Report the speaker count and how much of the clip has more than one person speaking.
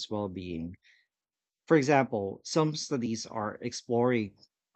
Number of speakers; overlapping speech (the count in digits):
1, no overlap